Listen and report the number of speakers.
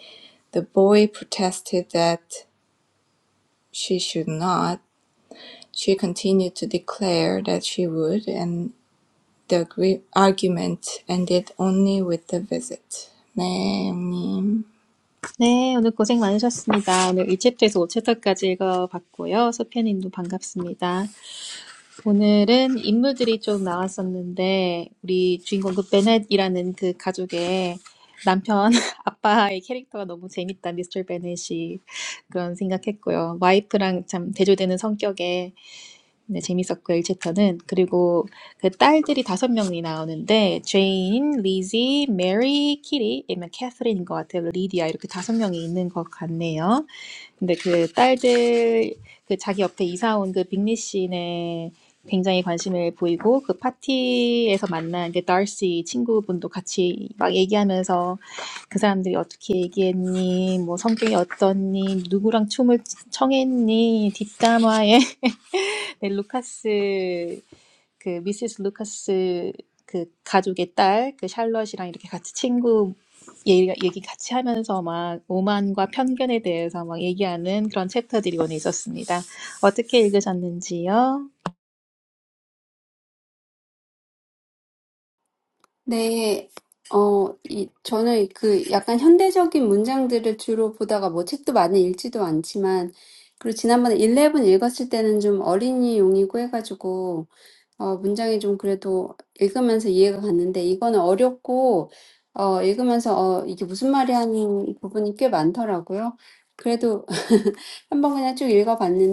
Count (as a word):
three